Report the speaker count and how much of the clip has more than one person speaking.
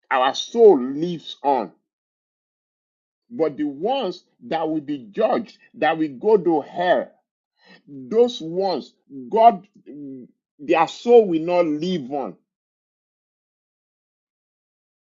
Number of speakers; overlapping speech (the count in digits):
1, no overlap